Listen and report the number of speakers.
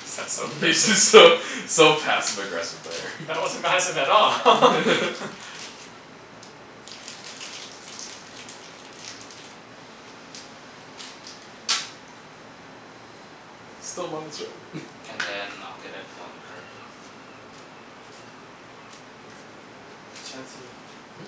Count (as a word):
three